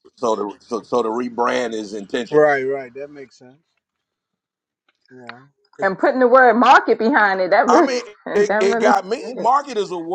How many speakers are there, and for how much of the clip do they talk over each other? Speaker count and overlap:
three, about 14%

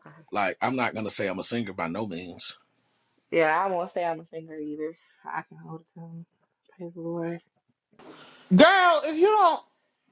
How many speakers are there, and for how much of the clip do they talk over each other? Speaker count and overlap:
three, no overlap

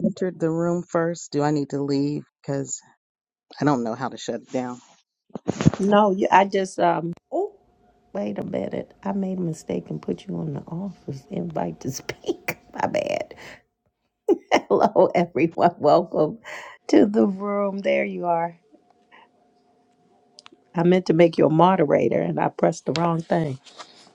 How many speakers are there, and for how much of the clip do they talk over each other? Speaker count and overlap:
two, no overlap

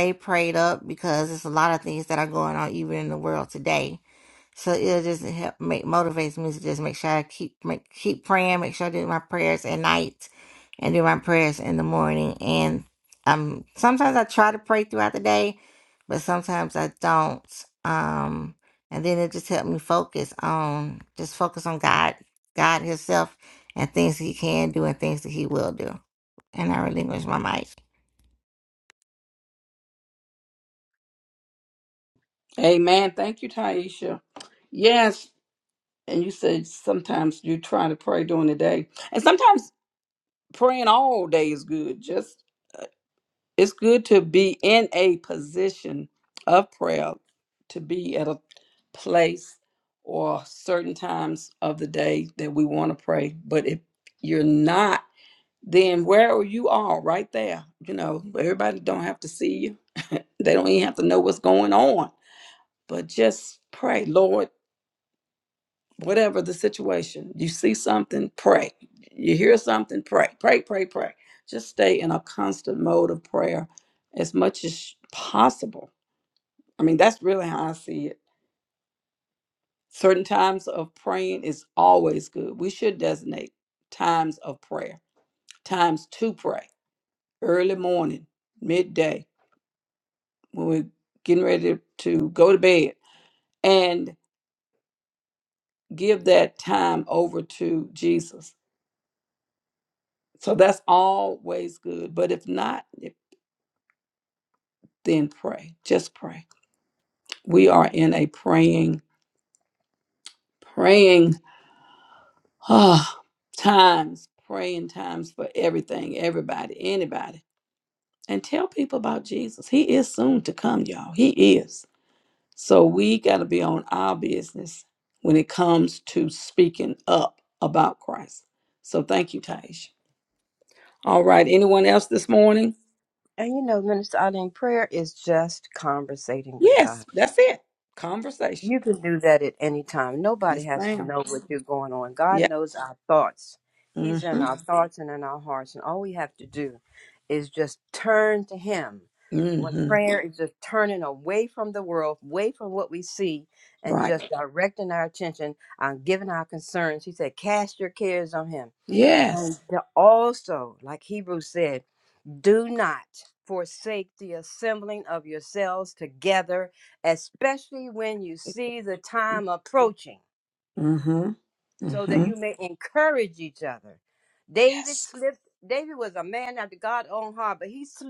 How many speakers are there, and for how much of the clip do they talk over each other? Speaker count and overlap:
three, about 2%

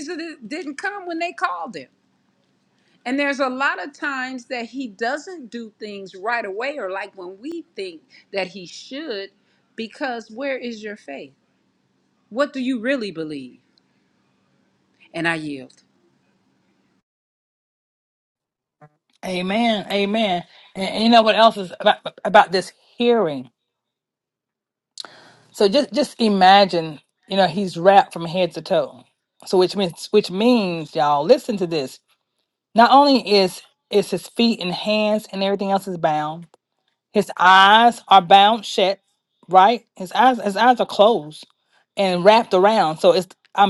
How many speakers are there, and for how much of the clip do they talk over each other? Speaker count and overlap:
two, no overlap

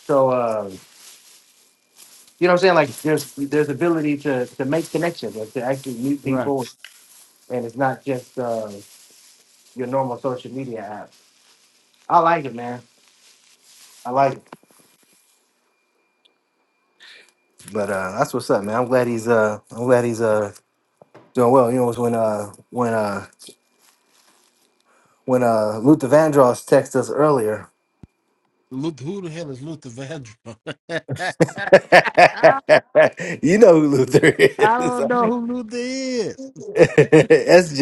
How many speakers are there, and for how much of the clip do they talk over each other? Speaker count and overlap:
two, about 2%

